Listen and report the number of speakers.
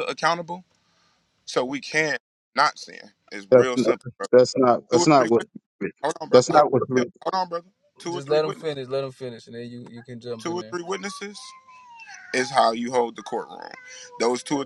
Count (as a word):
three